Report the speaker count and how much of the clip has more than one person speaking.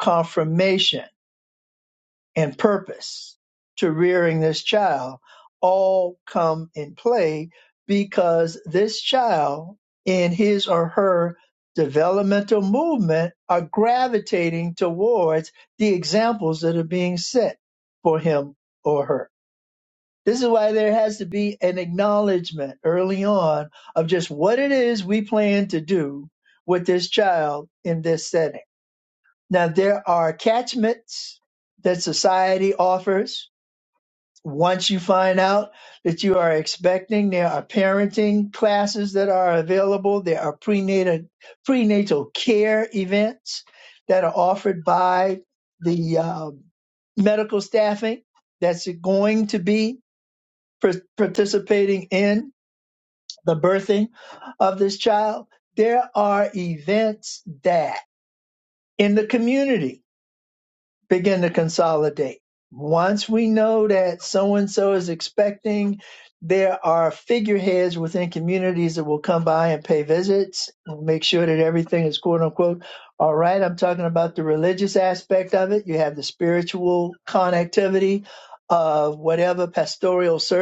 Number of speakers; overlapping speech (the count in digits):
1, no overlap